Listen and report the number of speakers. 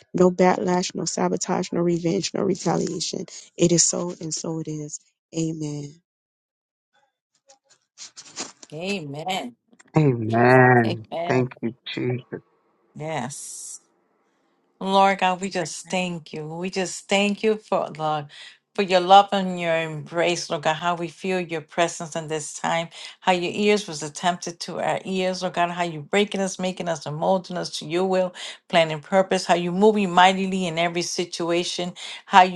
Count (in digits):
3